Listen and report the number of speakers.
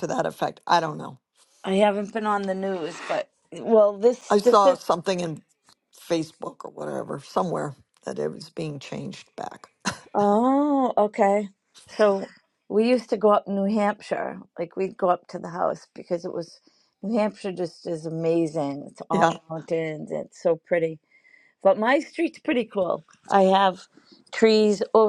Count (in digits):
2